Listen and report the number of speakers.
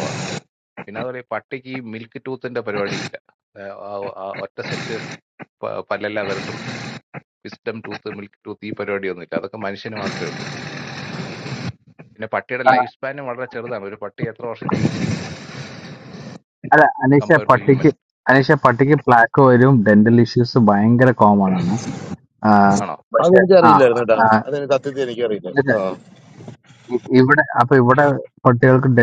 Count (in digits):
3